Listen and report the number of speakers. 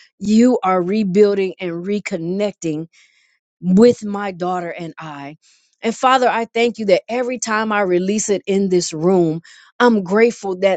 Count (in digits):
1